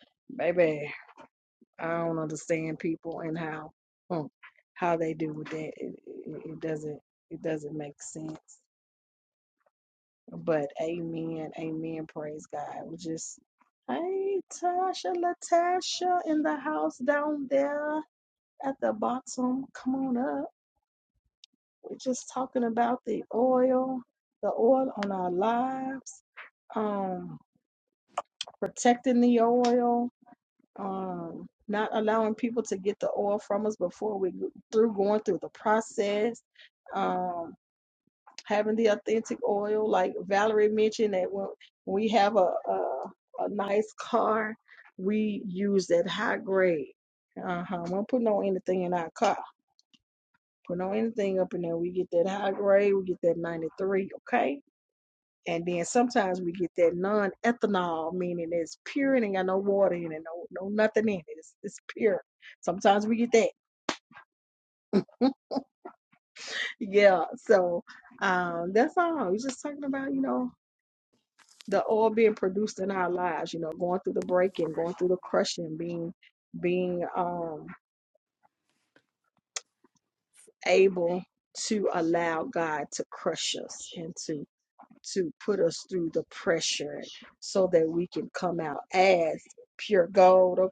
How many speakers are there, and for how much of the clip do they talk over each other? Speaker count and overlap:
1, no overlap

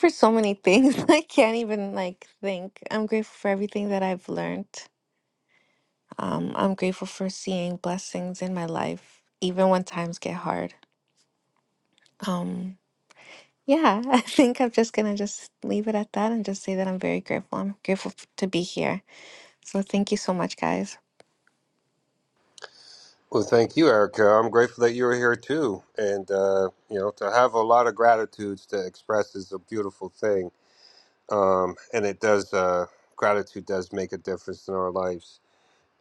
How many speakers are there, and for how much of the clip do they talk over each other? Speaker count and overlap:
2, no overlap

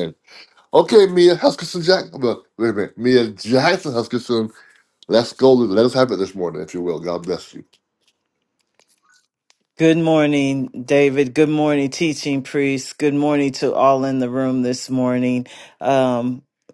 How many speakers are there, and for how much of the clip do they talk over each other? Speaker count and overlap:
2, no overlap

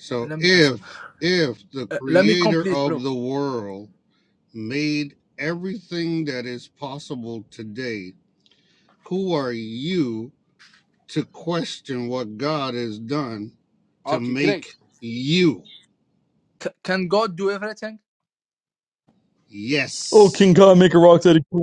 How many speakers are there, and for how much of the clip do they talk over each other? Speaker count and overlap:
3, about 11%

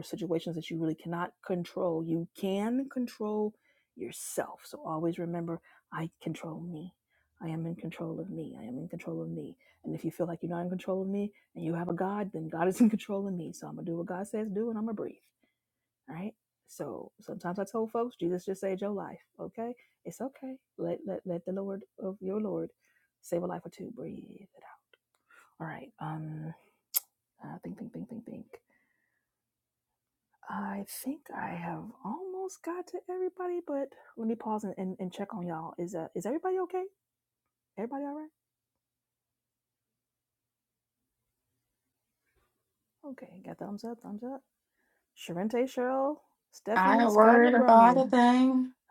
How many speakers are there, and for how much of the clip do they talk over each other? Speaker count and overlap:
2, about 3%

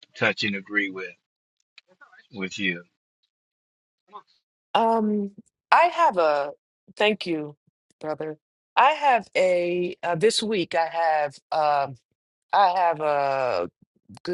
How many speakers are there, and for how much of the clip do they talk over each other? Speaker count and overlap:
2, no overlap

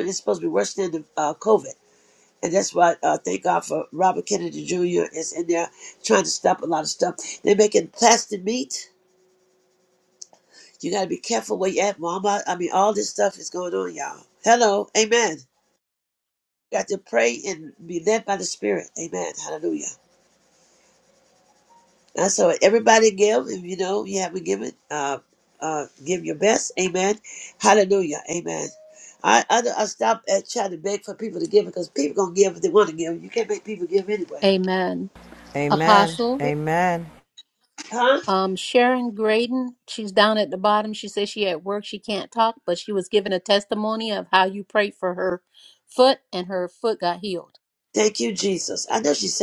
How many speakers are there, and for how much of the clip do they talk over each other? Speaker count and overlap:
3, about 2%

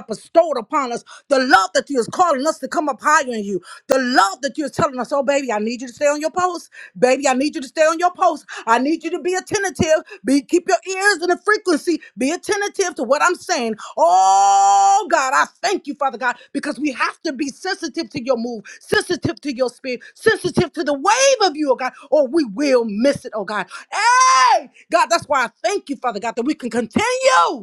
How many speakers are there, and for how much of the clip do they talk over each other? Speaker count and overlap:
1, no overlap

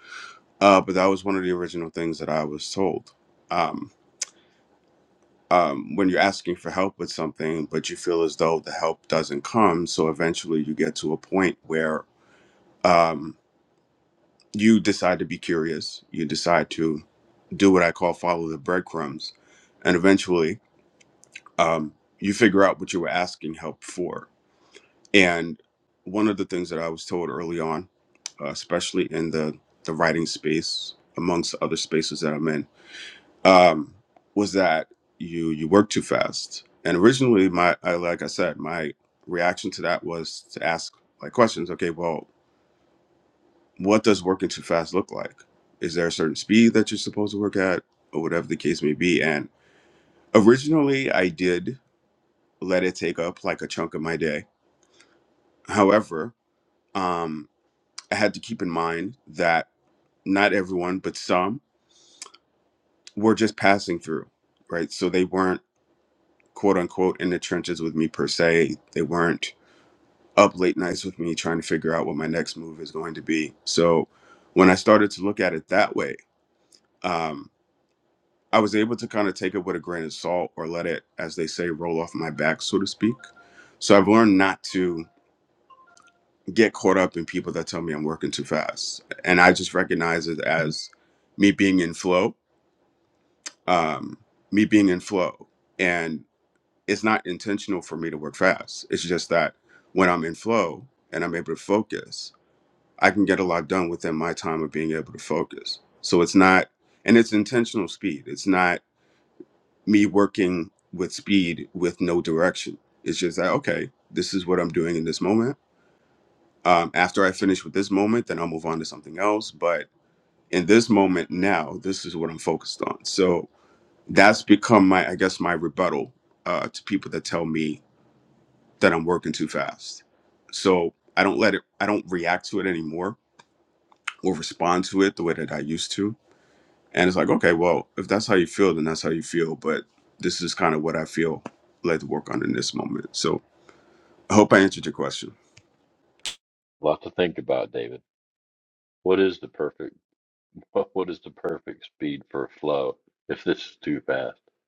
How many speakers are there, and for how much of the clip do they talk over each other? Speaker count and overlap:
2, no overlap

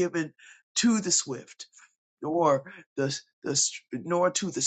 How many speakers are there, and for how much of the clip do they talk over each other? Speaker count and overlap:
1, no overlap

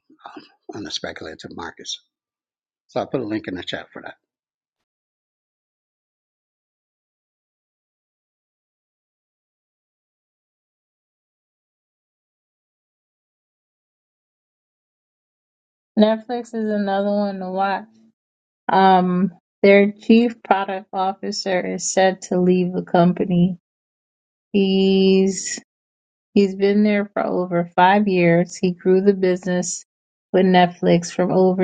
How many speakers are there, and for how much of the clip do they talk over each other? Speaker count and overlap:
2, no overlap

